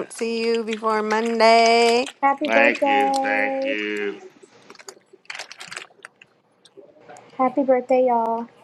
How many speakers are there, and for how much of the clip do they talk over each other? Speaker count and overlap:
3, about 12%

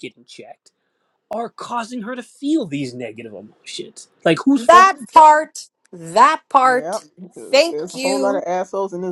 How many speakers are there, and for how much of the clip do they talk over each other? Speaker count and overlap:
3, about 20%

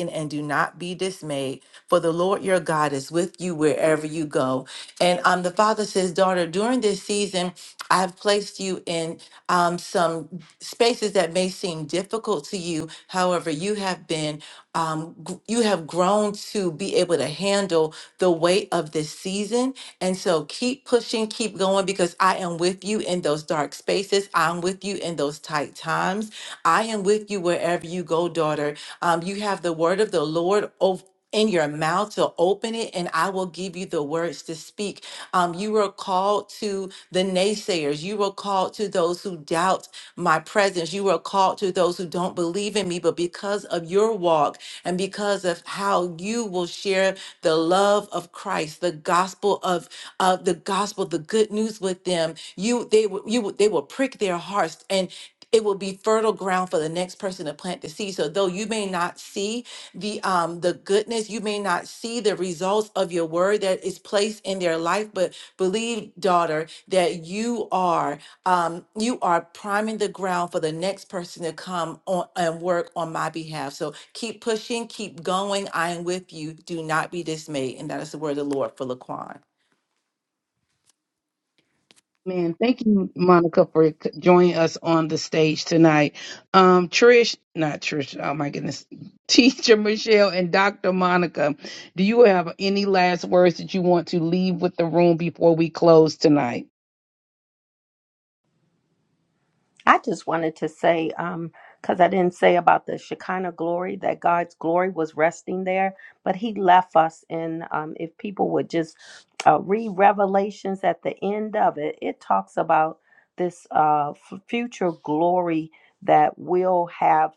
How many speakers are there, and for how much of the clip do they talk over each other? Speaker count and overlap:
3, no overlap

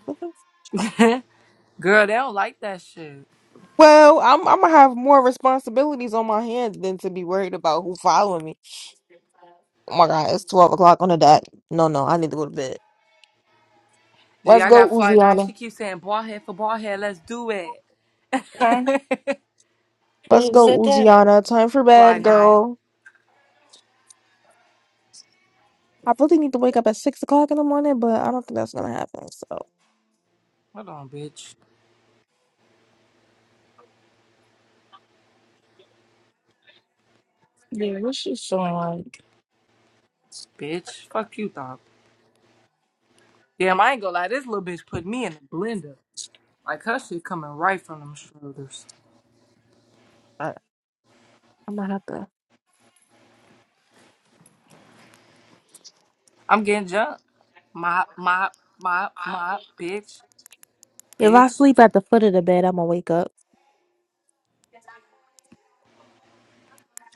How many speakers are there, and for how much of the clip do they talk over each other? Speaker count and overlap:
3, about 4%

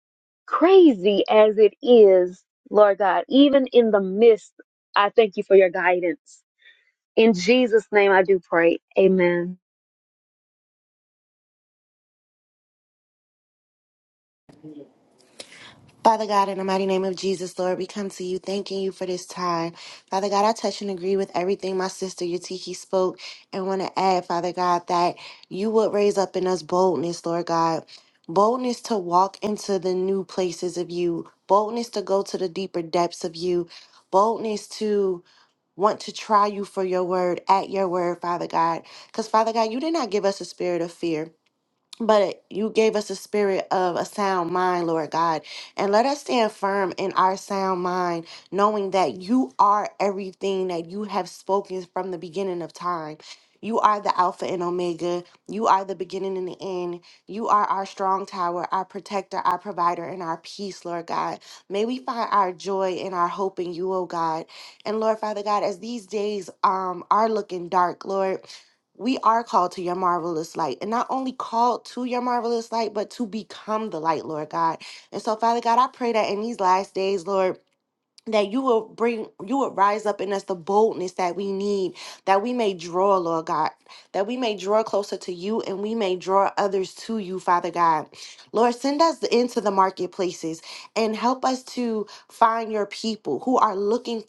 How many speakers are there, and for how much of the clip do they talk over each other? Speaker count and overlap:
2, no overlap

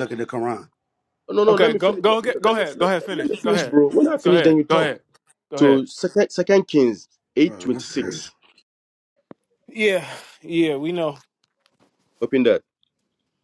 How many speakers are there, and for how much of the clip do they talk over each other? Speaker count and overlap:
3, about 28%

